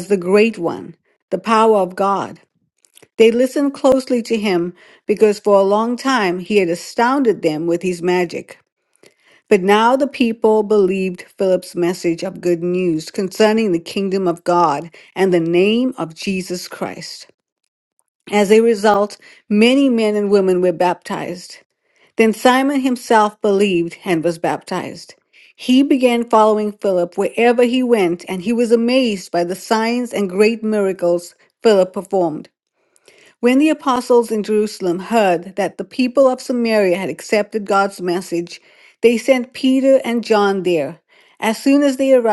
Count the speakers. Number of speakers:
1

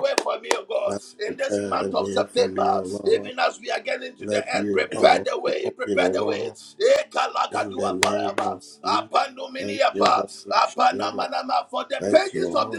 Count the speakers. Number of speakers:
2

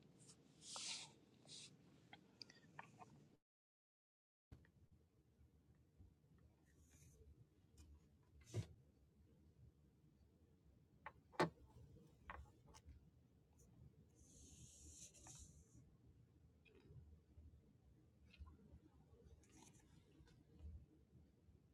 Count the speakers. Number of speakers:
0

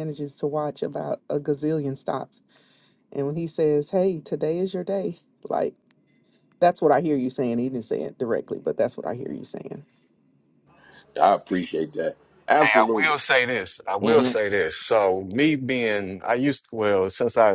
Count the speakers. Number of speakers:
3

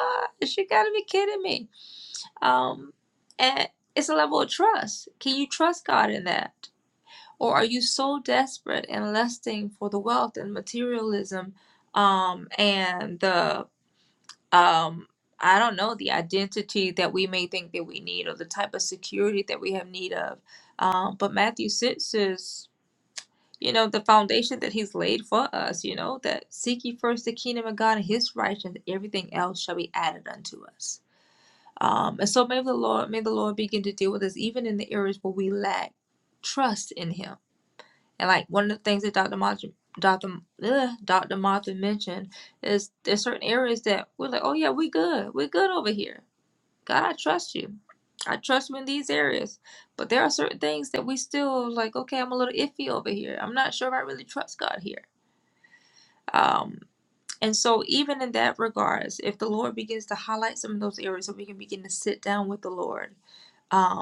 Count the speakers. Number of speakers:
1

